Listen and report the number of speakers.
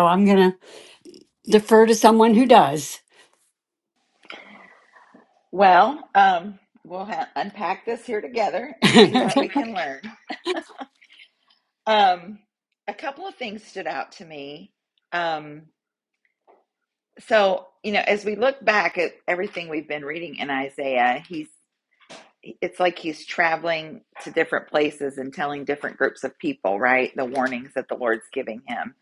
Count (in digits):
2